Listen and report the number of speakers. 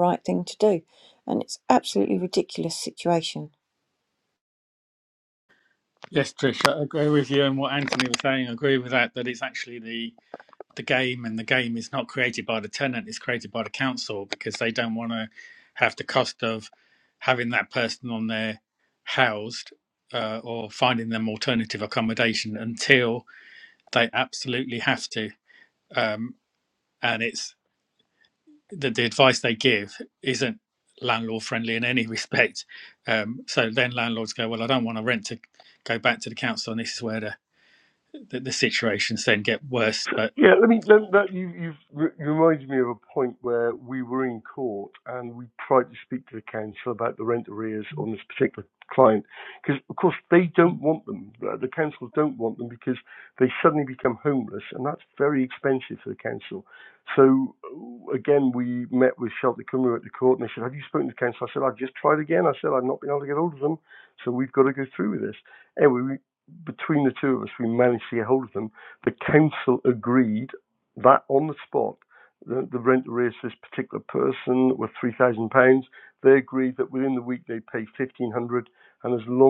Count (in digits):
3